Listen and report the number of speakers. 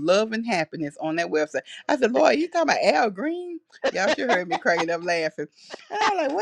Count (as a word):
one